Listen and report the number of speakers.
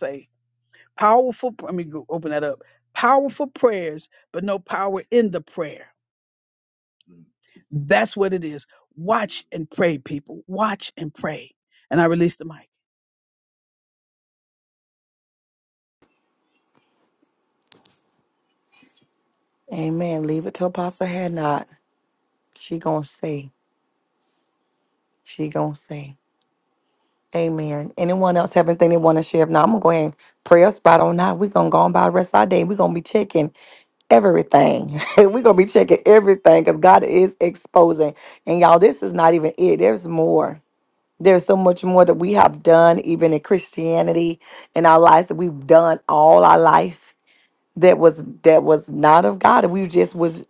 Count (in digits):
2